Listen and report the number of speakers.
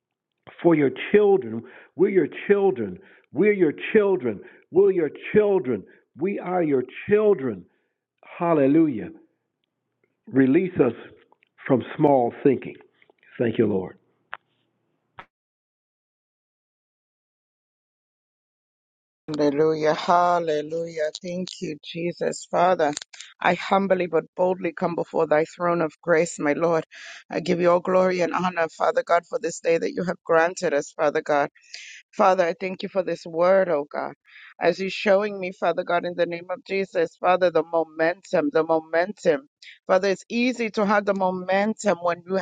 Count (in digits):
2